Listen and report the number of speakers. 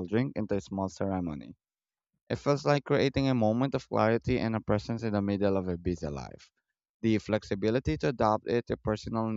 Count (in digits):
1